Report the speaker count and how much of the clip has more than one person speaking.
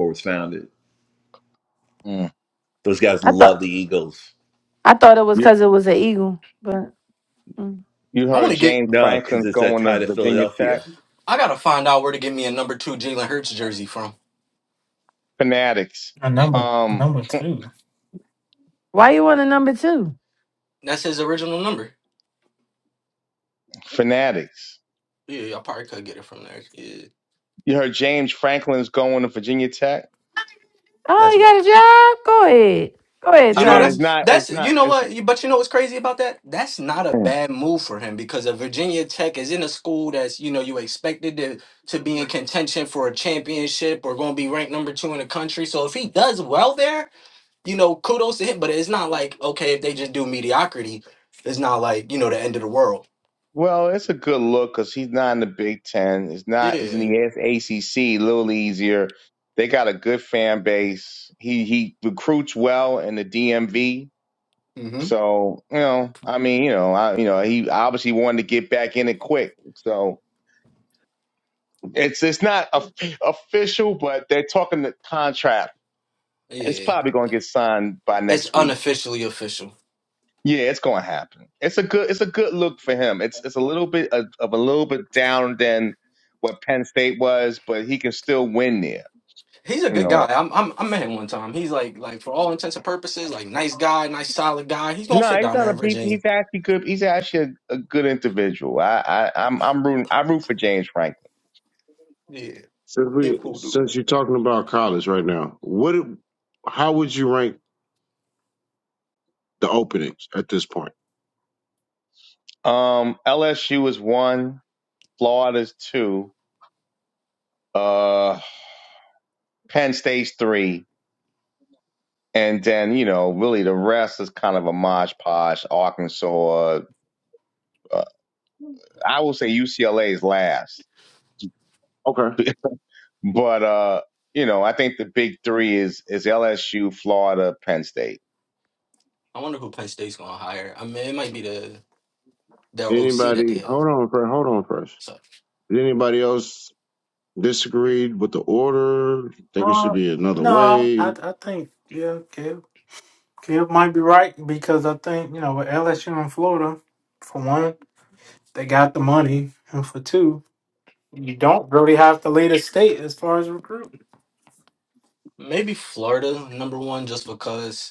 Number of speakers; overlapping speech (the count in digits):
6, about 7%